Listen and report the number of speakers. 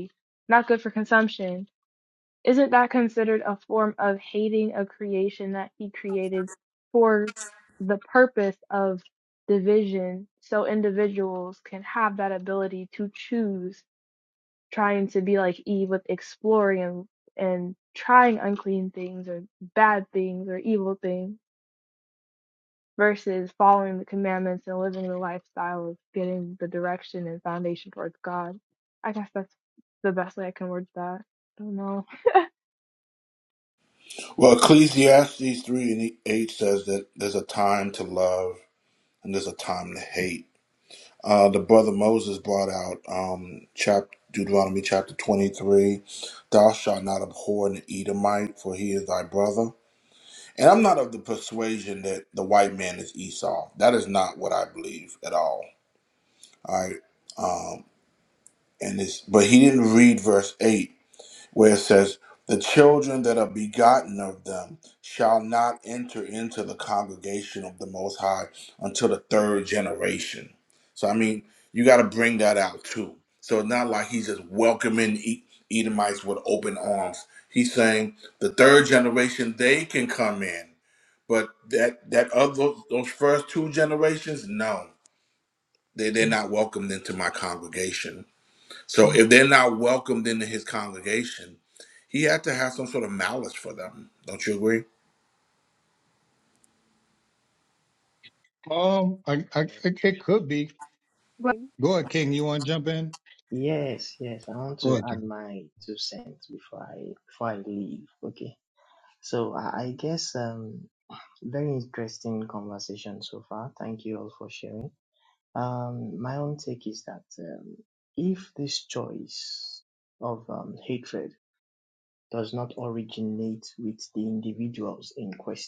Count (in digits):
4